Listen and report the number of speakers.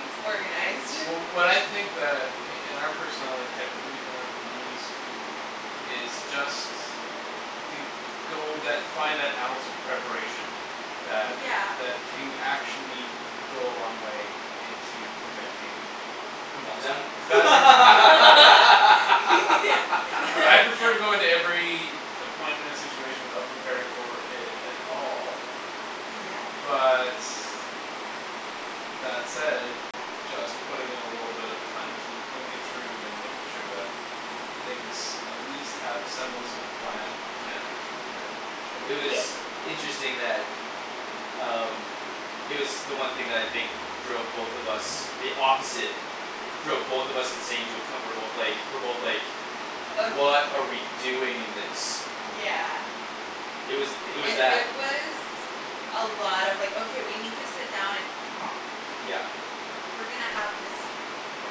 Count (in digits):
3